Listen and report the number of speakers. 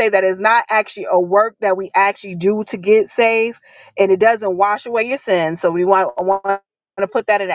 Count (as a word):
one